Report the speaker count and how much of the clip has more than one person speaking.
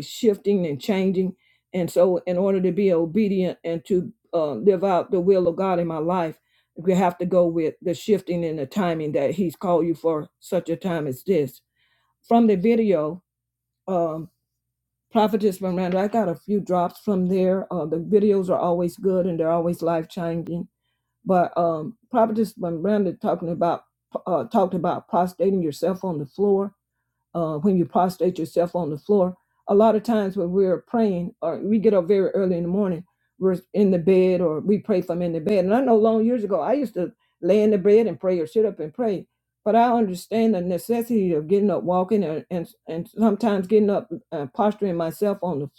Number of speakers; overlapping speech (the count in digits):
1, no overlap